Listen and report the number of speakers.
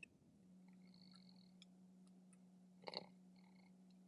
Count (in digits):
0